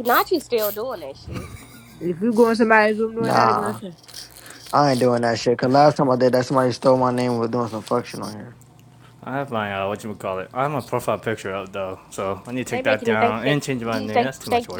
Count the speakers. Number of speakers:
4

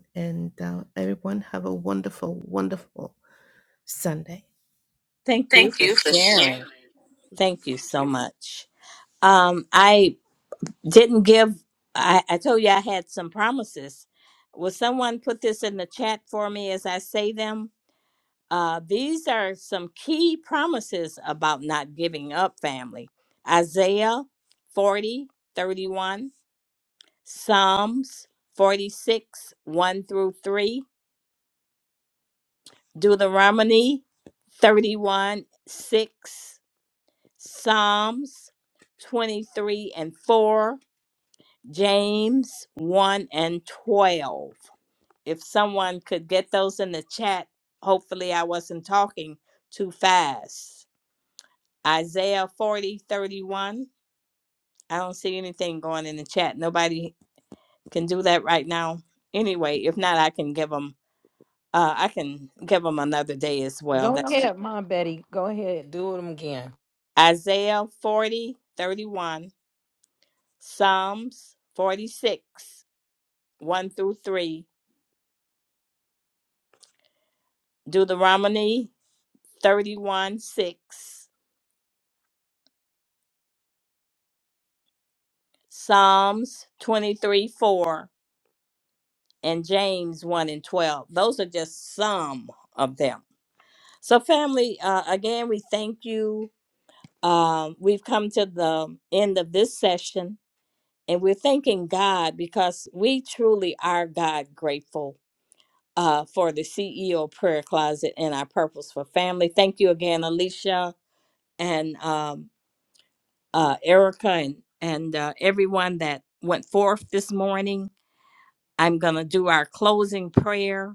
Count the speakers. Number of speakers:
3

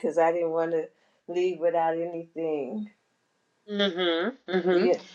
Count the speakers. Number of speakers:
2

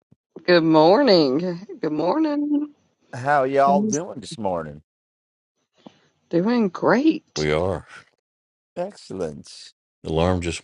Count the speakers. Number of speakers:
3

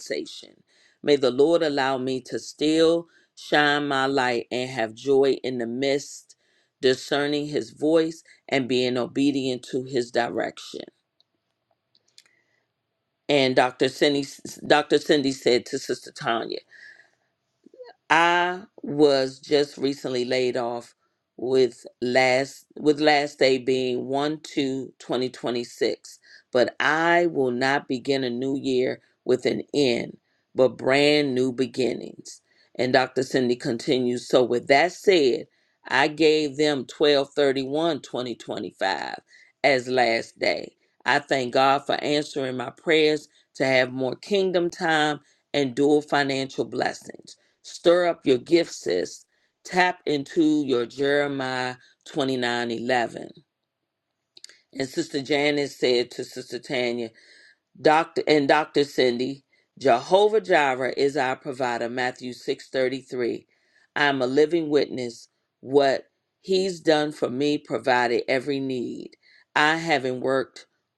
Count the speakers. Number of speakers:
1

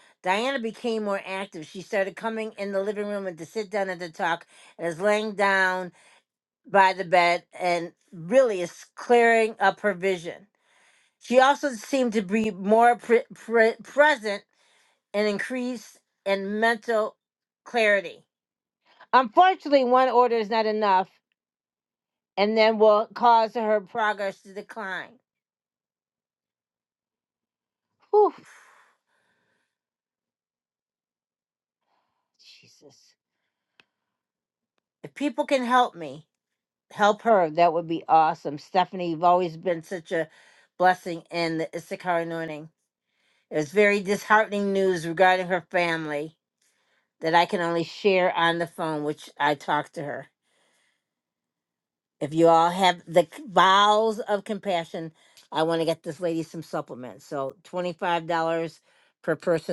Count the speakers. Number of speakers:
1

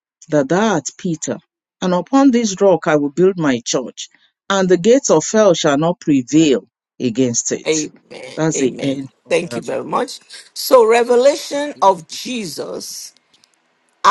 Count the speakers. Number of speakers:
2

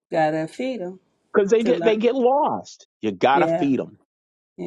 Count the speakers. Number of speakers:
2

